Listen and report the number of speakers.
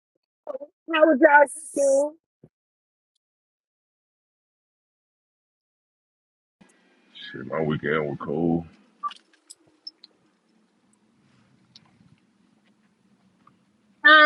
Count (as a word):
two